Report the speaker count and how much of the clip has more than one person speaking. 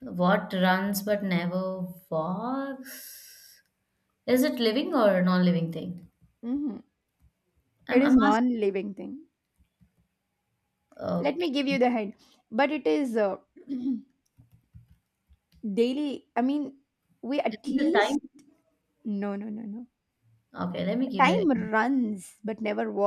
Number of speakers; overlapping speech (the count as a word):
two, about 8%